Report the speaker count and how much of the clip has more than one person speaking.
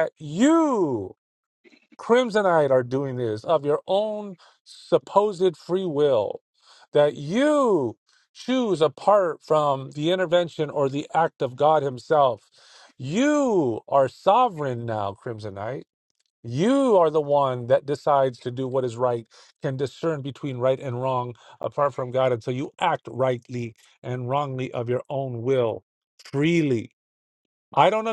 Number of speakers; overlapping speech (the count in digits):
1, no overlap